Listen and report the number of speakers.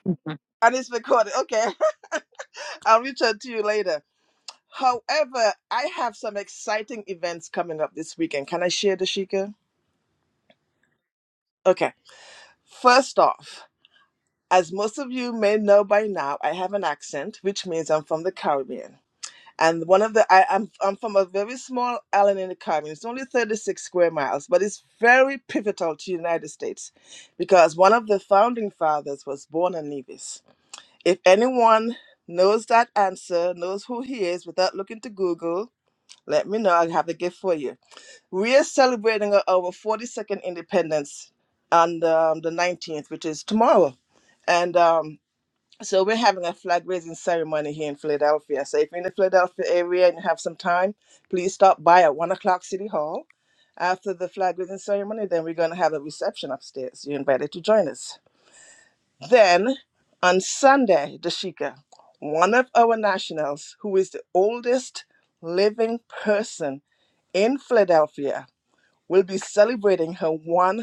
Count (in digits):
1